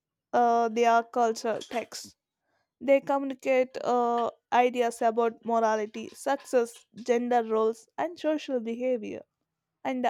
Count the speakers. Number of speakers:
one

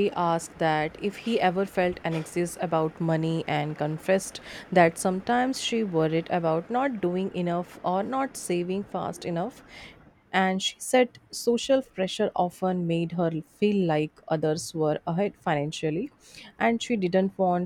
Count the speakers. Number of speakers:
one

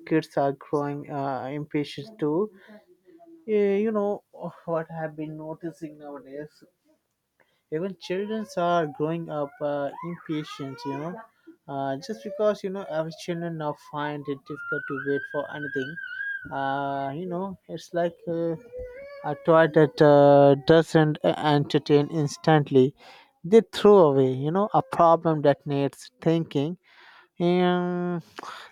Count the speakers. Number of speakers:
one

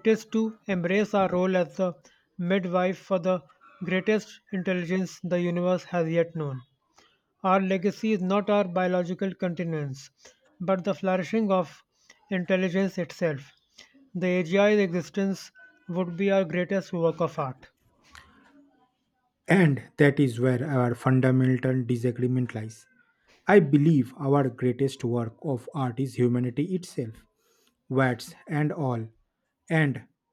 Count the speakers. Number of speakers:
two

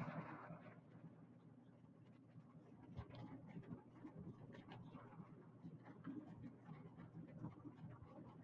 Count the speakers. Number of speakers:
zero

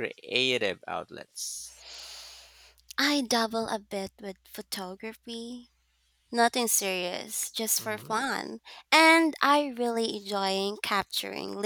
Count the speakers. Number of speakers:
two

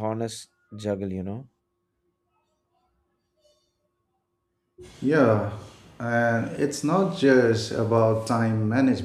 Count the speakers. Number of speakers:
two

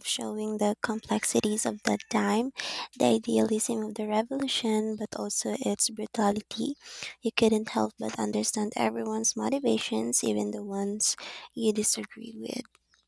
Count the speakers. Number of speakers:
one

